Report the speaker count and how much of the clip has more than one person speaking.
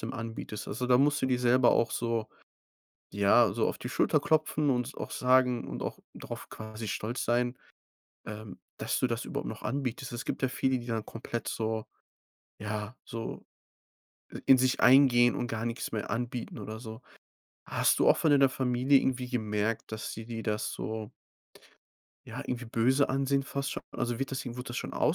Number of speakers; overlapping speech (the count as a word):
one, no overlap